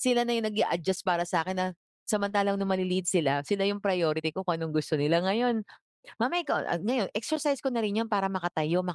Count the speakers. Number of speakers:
1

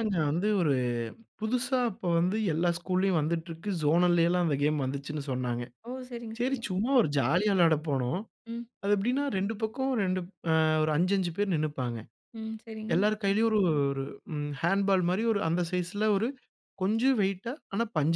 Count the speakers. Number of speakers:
2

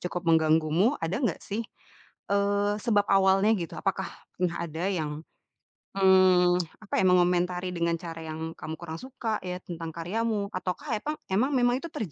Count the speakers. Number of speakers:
1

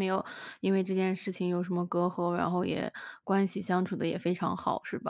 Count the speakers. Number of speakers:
1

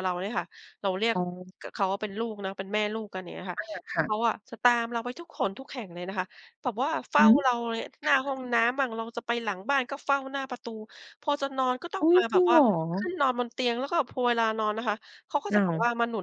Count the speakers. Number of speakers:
2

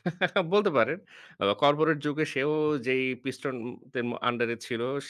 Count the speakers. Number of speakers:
1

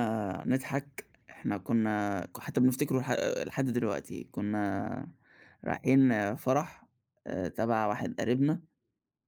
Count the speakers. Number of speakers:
1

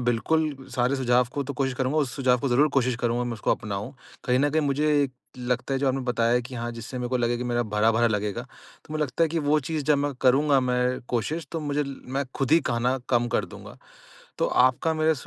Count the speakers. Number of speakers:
1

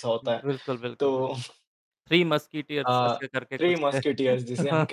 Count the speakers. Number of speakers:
2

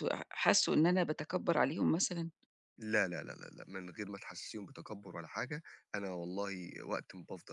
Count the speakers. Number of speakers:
2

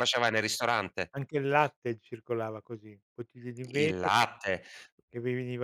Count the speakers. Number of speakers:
2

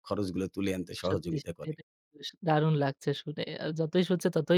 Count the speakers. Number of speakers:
2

